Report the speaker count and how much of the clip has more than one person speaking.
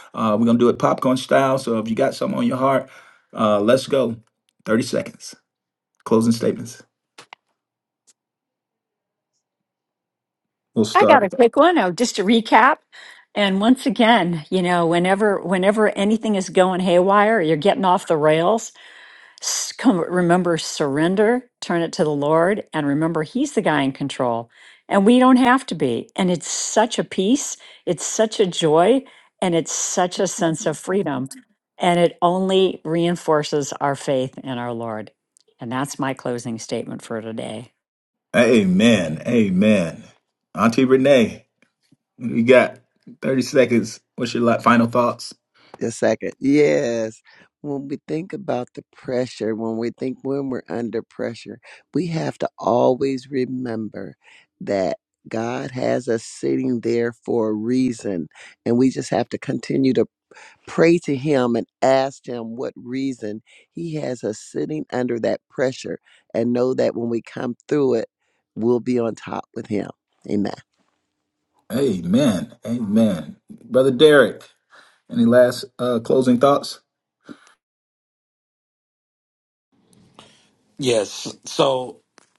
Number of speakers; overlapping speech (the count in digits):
4, under 1%